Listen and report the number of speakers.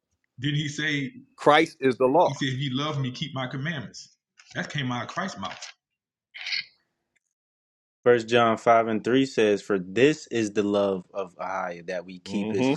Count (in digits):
3